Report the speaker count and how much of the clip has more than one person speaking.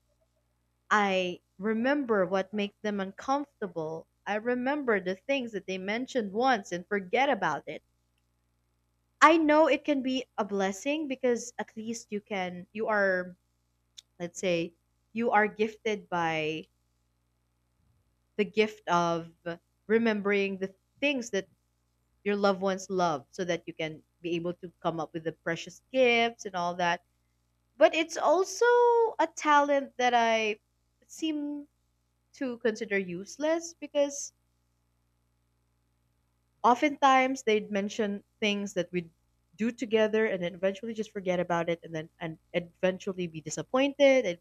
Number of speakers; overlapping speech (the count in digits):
1, no overlap